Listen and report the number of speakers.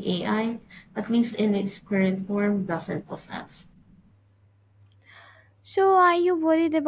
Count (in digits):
2